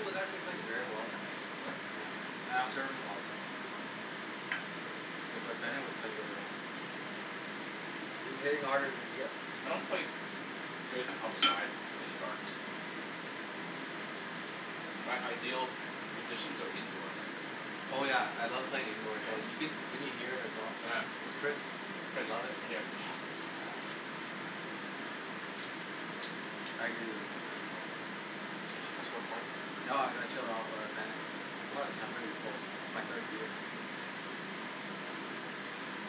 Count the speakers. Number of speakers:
2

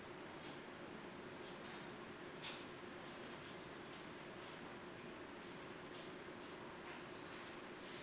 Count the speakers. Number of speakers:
0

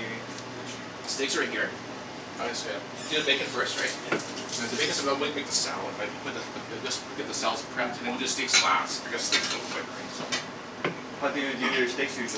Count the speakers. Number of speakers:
2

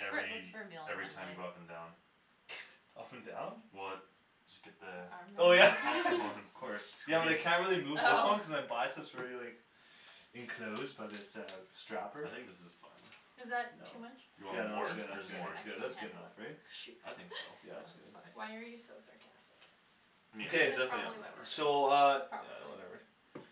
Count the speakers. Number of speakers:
4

